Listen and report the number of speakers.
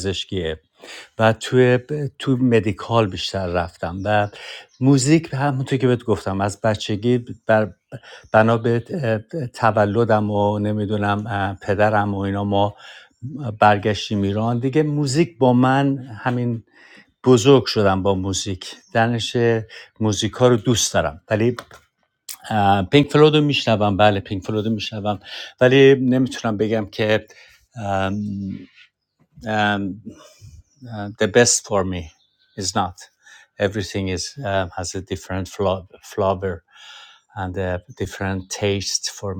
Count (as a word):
one